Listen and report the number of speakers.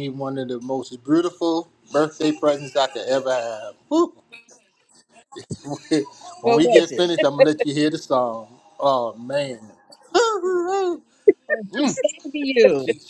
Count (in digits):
2